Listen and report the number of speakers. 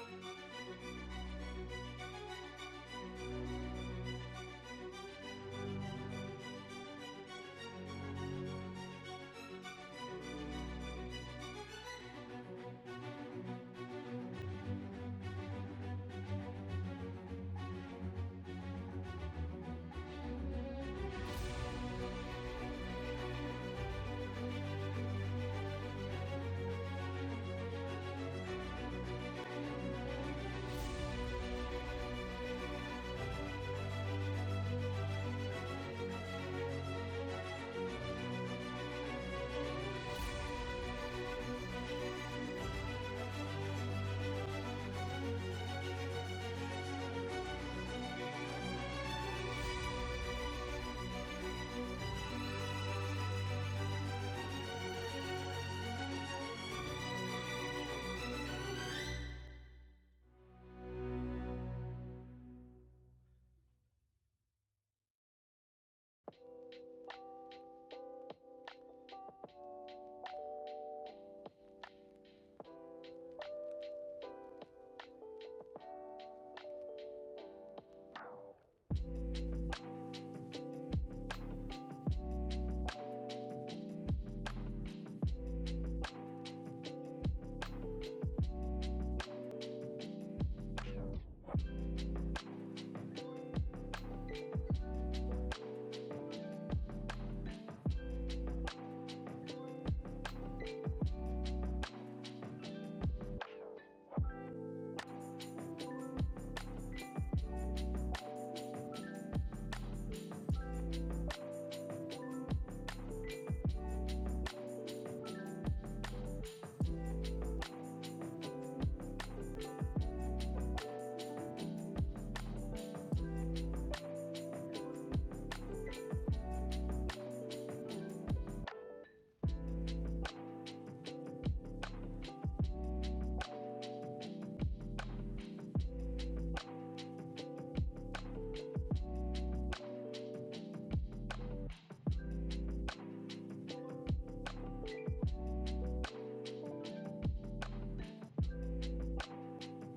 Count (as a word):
zero